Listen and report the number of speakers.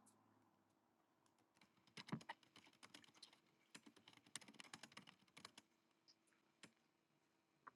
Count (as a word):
zero